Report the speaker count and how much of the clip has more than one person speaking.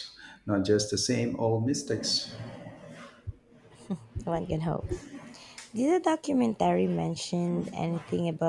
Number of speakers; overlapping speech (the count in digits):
2, no overlap